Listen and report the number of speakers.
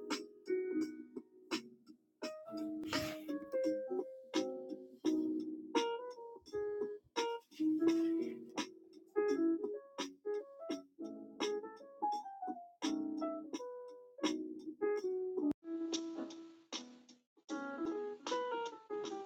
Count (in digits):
0